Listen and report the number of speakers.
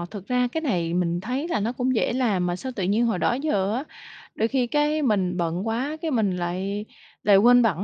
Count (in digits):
1